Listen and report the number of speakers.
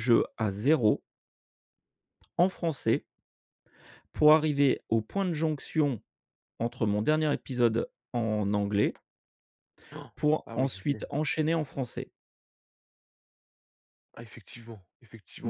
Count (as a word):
two